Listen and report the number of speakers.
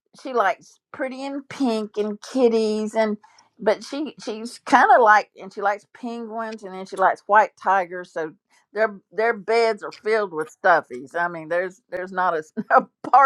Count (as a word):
one